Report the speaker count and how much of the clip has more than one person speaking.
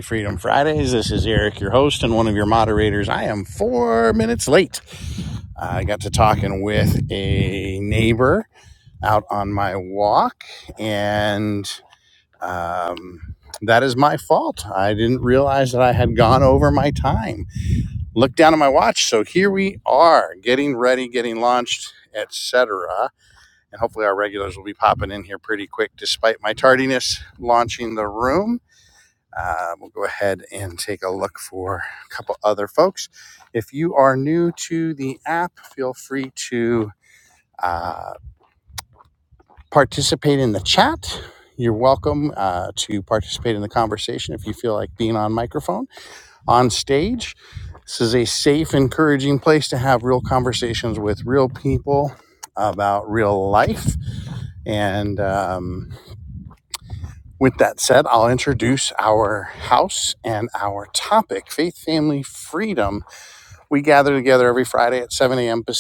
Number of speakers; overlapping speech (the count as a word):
one, no overlap